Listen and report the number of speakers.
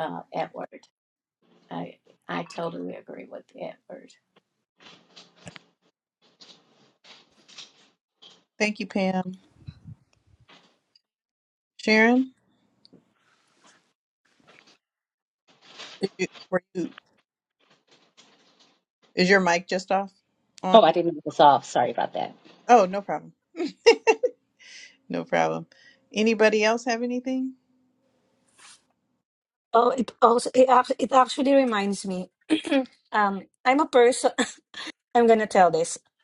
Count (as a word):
four